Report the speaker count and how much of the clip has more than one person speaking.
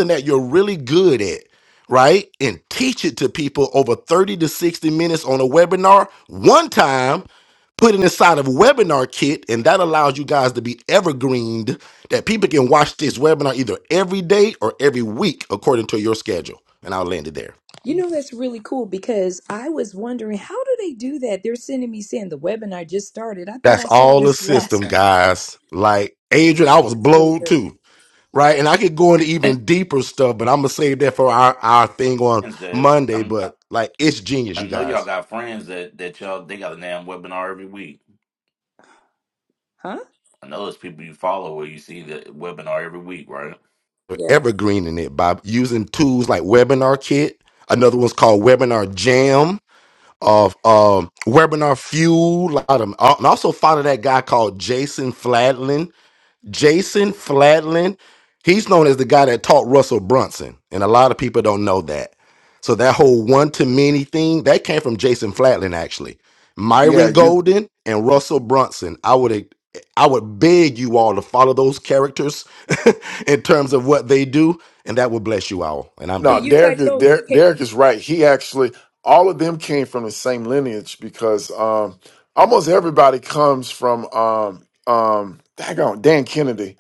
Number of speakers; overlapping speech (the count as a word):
four, about 6%